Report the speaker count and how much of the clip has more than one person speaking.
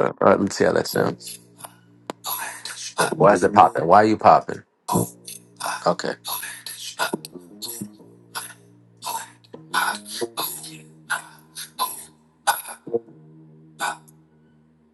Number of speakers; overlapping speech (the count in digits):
1, no overlap